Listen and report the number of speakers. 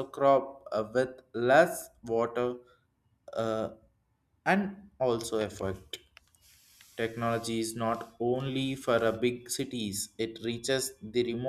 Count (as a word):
one